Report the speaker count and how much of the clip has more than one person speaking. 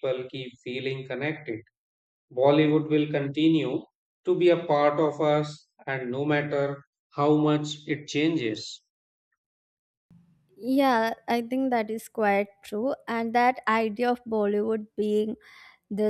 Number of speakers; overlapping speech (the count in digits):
2, no overlap